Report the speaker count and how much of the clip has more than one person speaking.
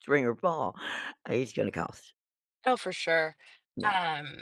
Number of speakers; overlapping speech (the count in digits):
2, about 4%